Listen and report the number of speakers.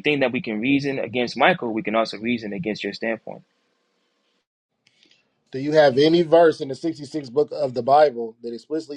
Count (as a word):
two